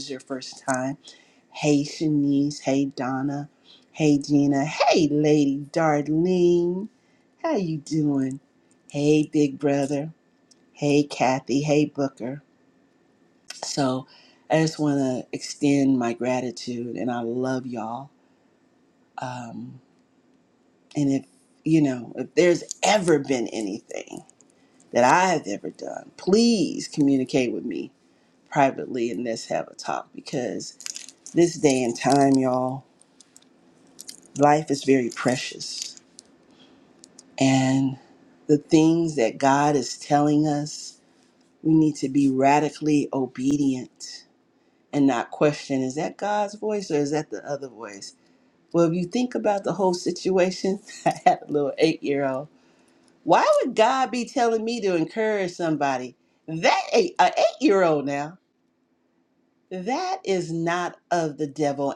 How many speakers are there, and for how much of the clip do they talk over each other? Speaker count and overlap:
1, no overlap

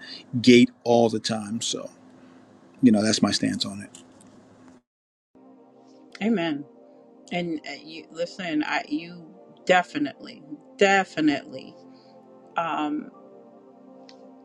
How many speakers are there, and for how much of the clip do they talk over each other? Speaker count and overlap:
2, no overlap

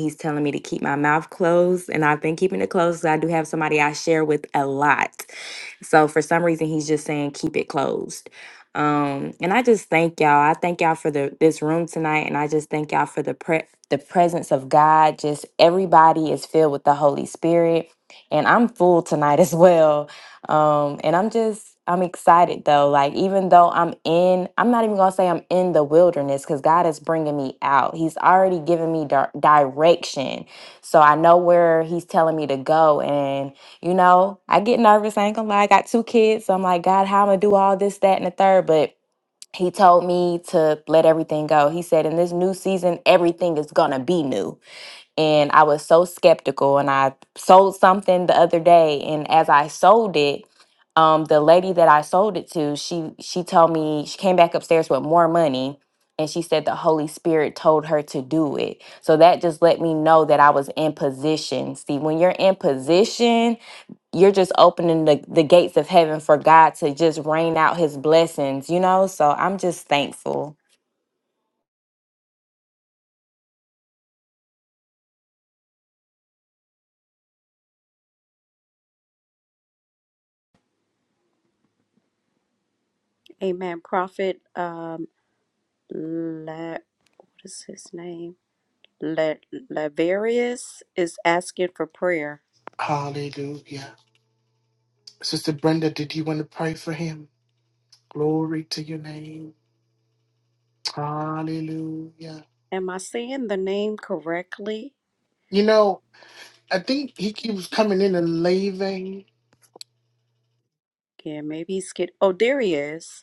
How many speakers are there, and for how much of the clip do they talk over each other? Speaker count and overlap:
3, no overlap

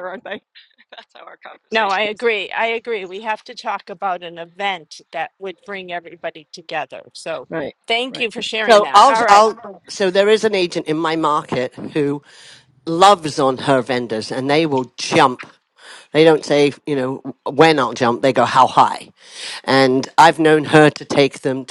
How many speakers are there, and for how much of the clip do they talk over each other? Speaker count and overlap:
3, about 6%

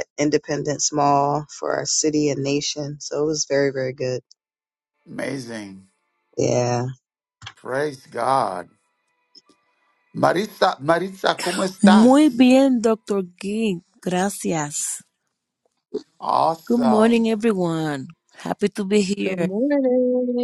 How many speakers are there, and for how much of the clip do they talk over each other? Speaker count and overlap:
4, about 5%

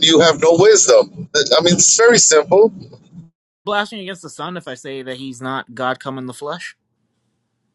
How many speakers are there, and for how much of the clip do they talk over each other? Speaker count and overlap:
2, no overlap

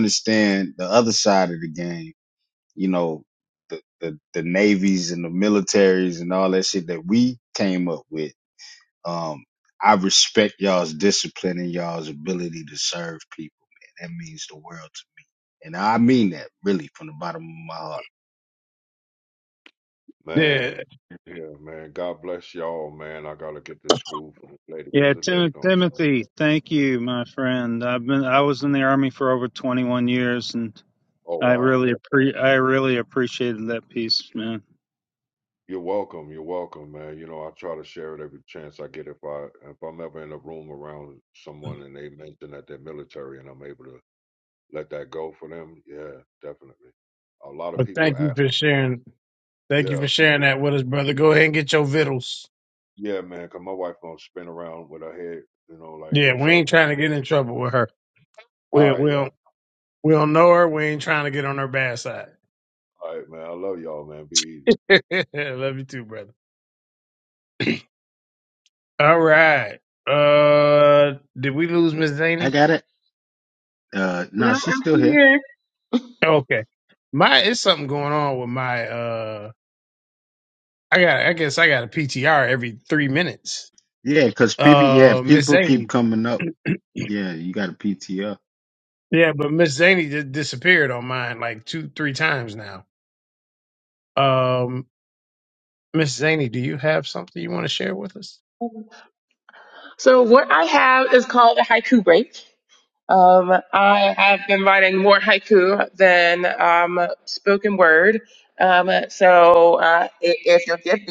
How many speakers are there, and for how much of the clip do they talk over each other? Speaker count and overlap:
5, about 6%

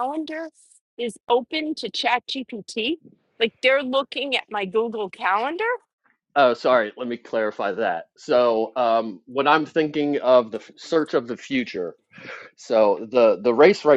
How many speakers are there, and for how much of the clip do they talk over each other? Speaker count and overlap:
2, no overlap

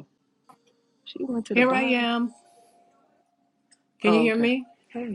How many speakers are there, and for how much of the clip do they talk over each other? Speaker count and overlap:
2, about 18%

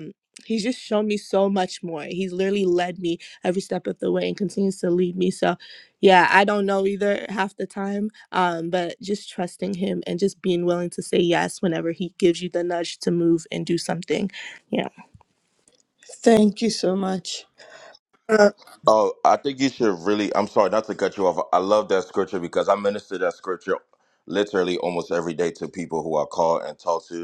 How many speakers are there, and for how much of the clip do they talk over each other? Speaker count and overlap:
3, no overlap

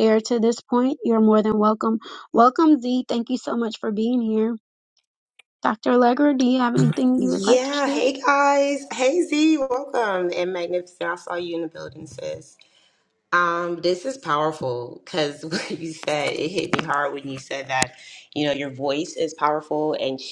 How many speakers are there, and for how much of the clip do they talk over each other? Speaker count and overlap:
2, about 4%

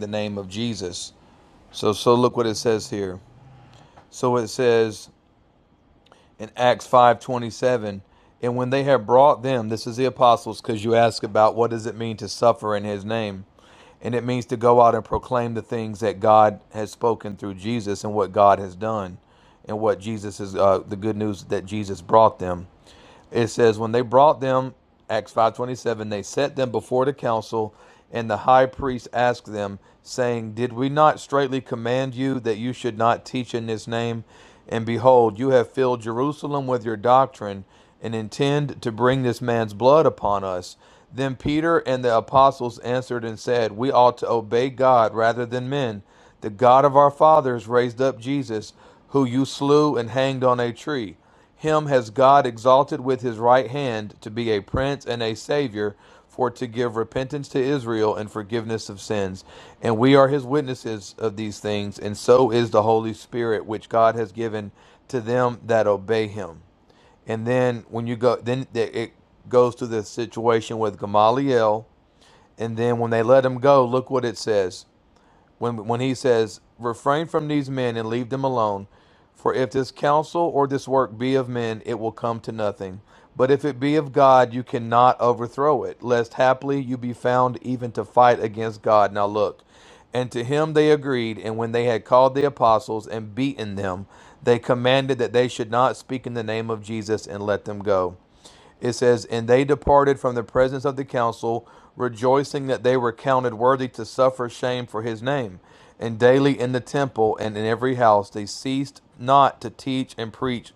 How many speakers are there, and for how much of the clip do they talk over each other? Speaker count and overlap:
1, no overlap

